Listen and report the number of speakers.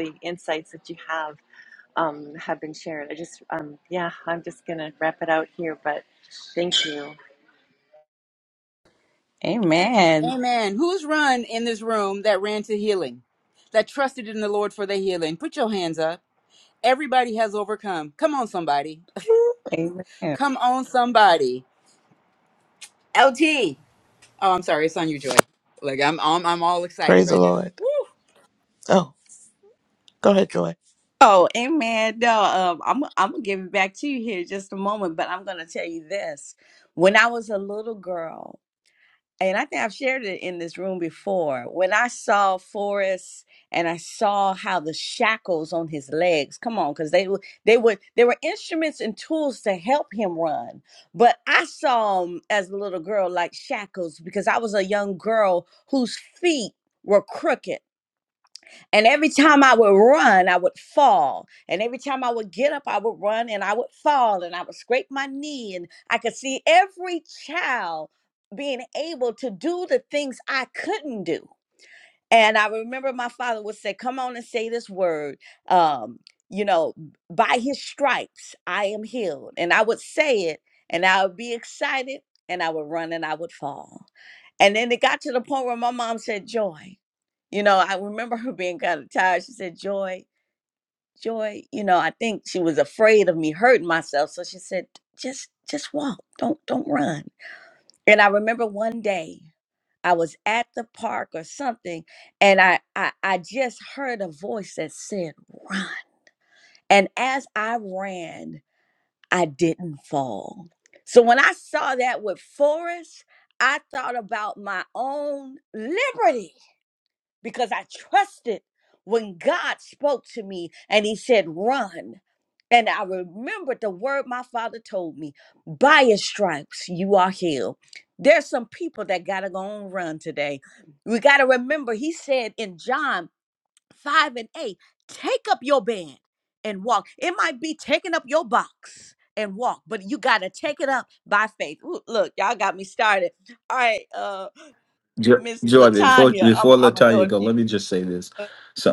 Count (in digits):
5